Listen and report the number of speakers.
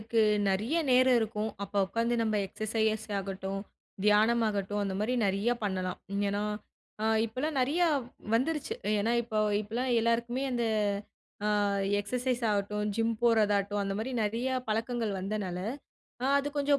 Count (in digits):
1